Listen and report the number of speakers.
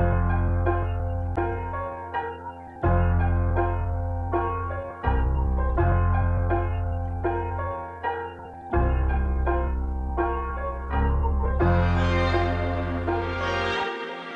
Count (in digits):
0